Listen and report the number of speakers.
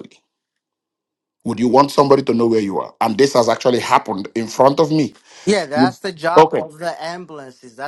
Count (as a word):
two